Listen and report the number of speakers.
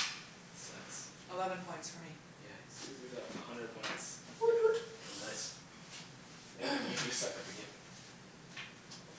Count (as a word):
three